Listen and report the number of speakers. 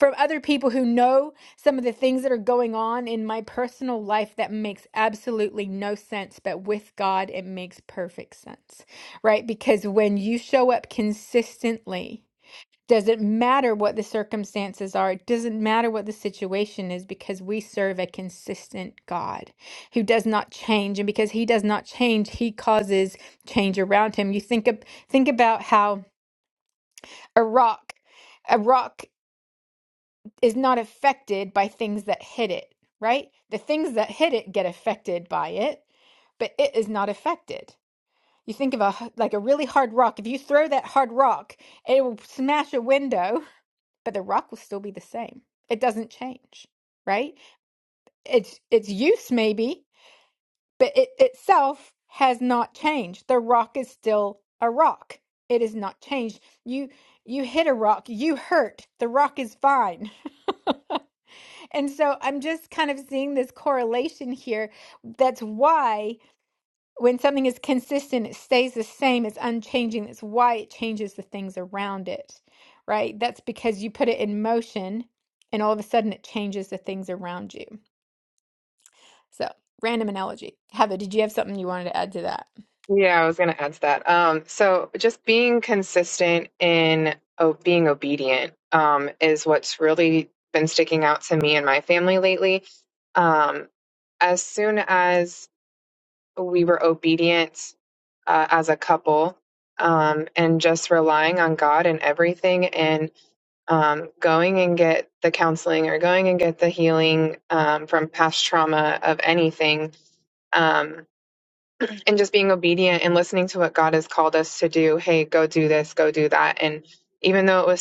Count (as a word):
two